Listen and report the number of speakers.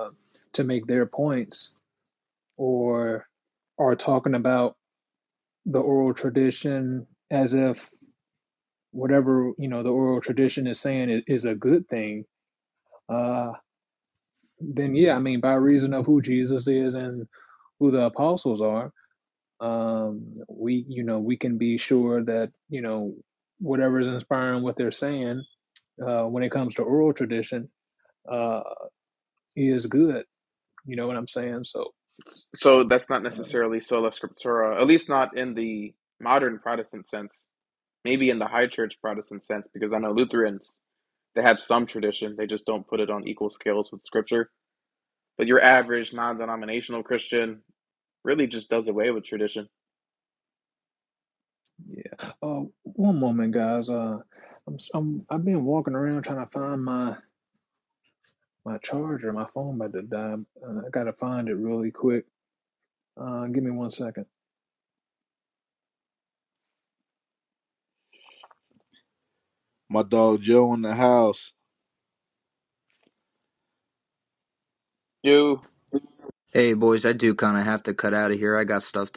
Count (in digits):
4